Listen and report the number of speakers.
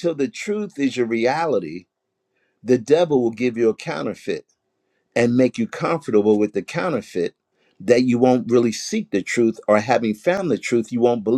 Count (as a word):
one